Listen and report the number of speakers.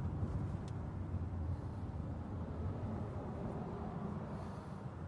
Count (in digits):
0